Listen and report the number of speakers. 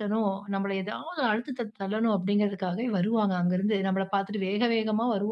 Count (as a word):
one